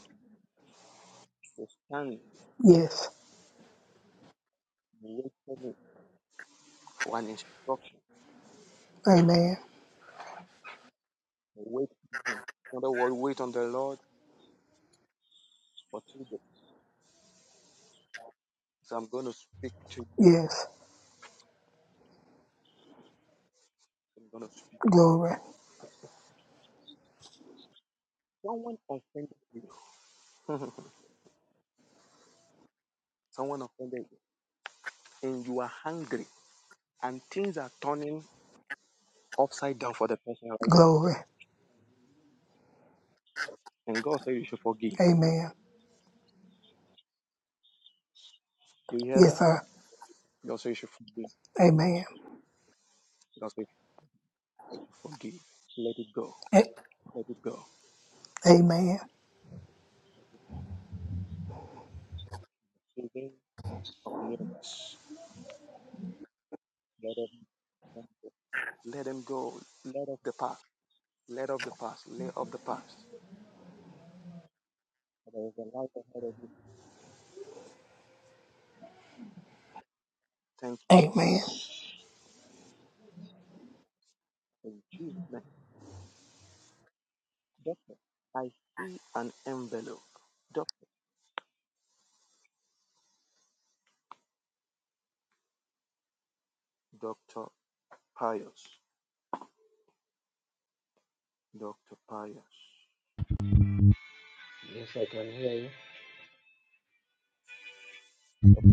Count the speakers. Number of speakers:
three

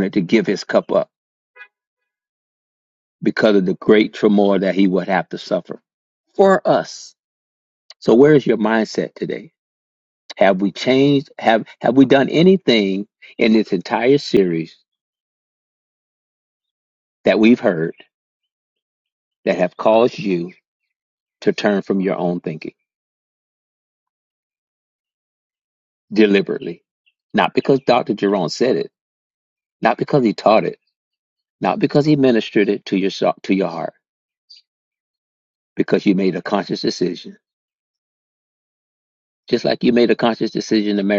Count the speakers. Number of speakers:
one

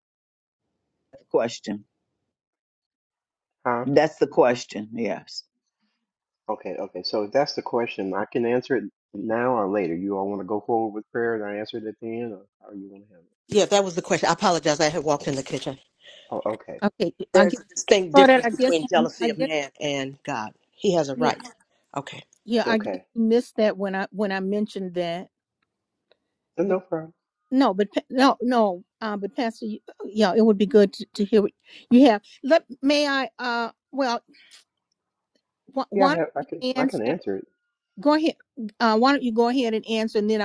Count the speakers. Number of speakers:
four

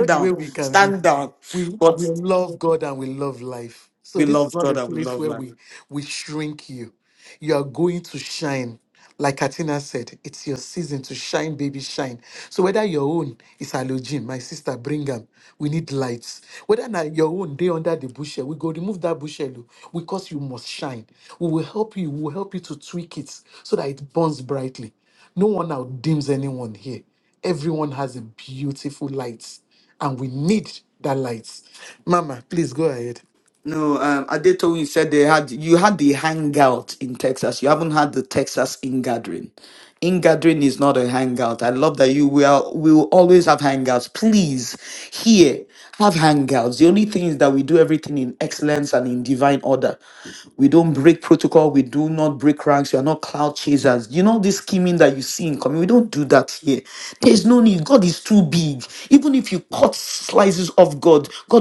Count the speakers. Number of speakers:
two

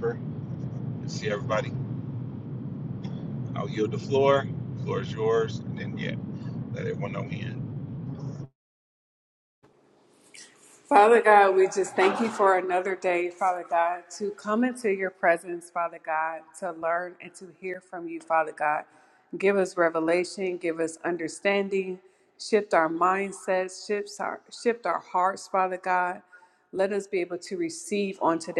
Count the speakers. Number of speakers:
two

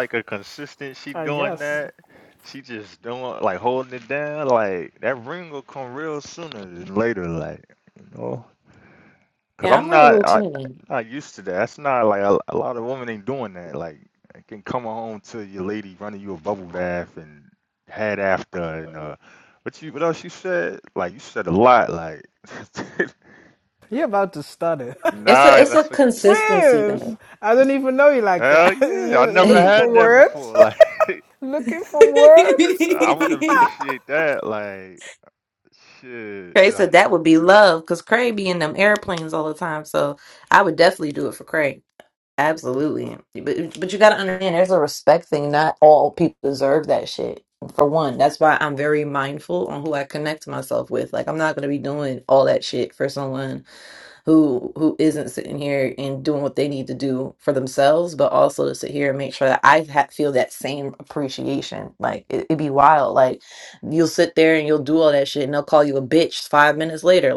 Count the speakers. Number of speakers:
three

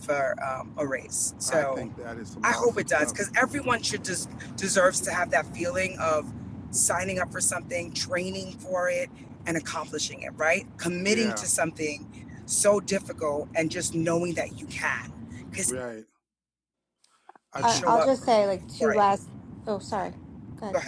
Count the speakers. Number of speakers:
three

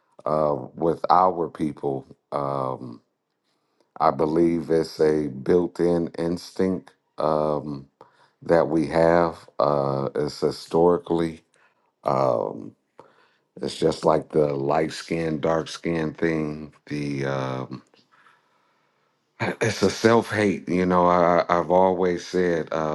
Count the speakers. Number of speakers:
one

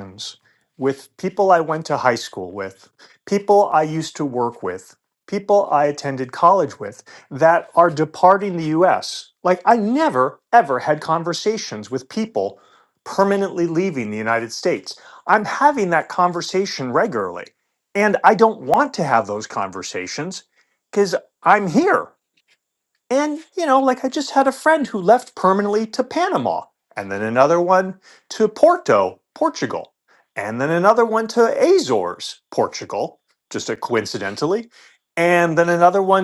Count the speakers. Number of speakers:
one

